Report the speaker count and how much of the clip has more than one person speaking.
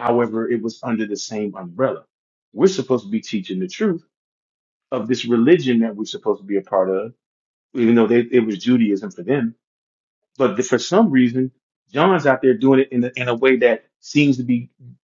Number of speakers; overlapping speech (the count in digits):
1, no overlap